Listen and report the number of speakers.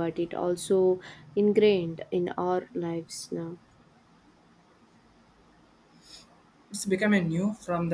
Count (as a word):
two